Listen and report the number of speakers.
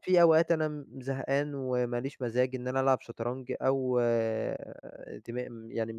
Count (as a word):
one